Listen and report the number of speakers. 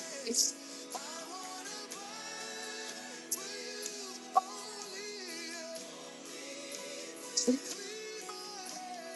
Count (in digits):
0